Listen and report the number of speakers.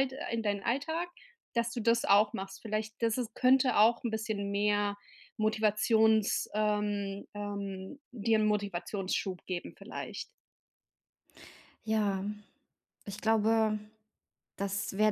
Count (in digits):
2